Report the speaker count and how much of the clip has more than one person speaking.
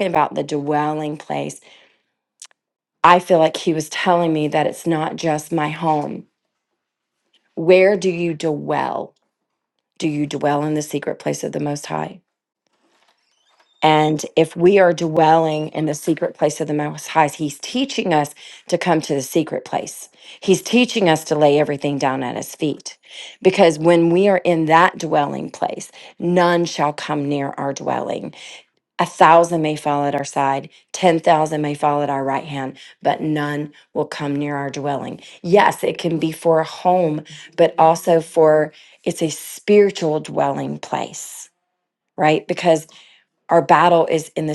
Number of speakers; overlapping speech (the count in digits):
1, no overlap